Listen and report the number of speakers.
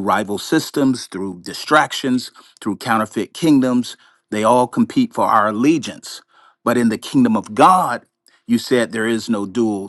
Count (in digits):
1